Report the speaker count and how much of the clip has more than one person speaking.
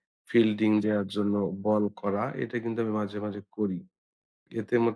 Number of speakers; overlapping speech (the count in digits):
1, no overlap